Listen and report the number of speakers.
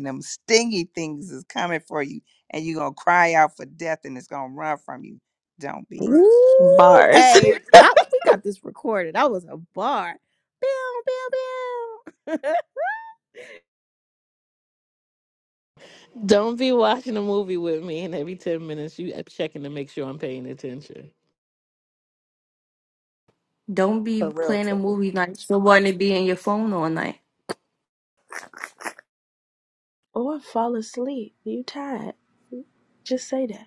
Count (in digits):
5